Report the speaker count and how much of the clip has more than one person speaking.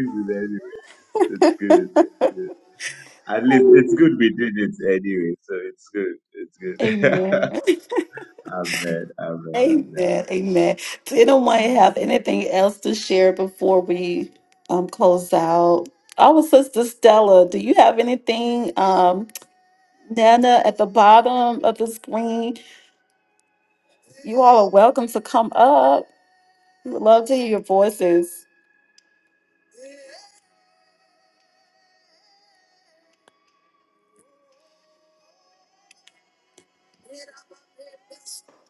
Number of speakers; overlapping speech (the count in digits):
2, about 1%